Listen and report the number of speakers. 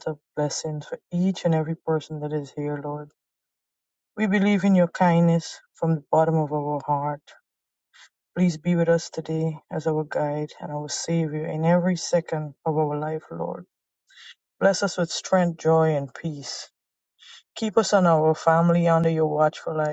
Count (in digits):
1